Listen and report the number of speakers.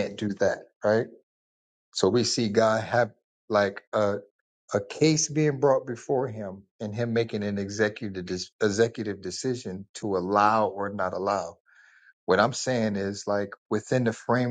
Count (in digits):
1